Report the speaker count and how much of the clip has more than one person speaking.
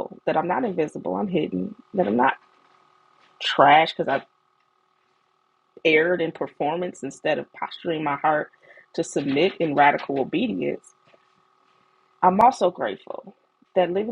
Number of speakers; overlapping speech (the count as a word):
one, no overlap